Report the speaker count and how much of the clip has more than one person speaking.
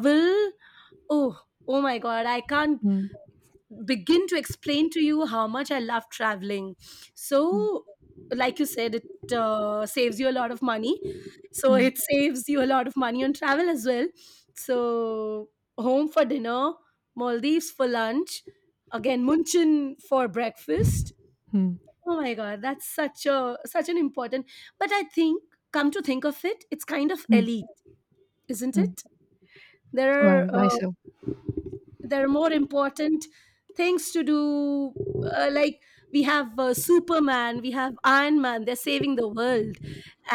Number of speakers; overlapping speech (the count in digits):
2, about 3%